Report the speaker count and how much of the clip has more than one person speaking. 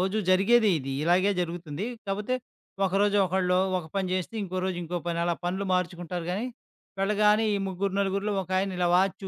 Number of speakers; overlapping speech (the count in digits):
1, no overlap